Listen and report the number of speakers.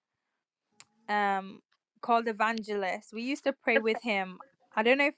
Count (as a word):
one